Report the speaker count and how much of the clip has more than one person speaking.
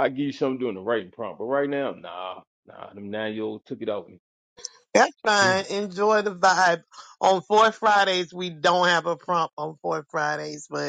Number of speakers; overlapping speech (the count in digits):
2, about 2%